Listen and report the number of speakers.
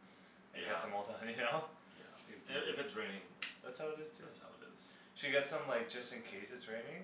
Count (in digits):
2